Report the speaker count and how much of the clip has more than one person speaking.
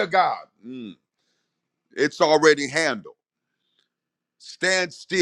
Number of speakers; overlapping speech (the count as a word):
one, no overlap